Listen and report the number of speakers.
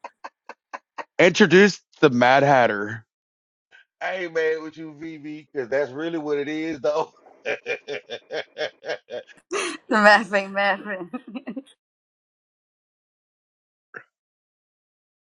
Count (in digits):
3